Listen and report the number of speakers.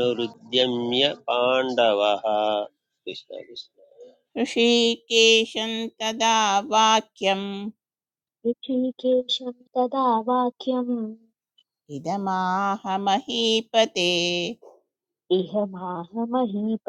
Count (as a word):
three